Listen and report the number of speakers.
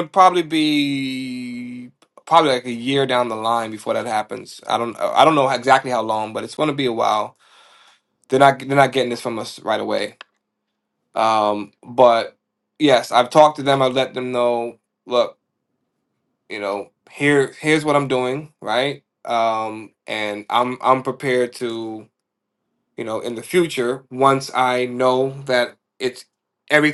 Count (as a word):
one